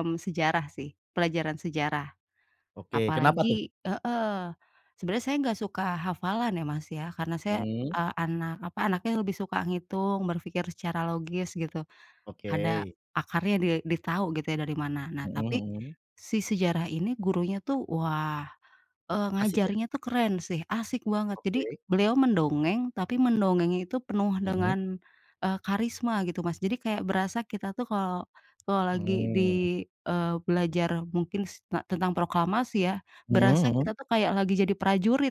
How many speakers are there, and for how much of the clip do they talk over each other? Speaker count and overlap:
2, about 12%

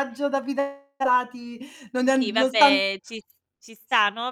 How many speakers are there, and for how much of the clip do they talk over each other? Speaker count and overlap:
2, about 15%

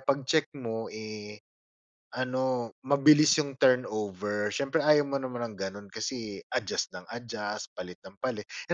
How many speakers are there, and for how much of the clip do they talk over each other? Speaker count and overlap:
1, no overlap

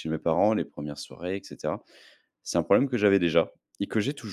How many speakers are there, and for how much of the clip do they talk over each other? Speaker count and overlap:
1, no overlap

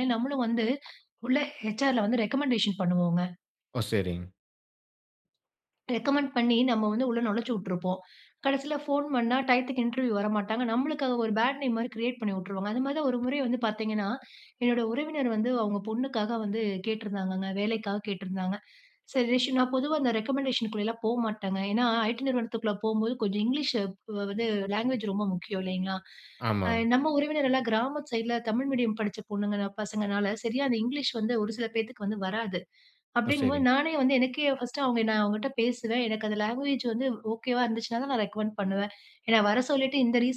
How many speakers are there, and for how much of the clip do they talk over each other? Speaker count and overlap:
2, about 1%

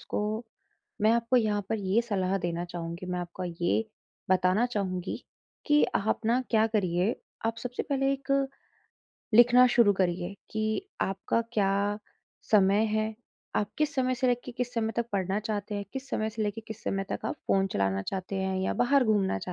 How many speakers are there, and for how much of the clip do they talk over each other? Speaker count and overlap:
1, no overlap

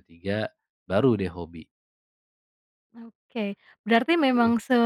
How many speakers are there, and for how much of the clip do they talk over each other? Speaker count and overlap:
2, about 4%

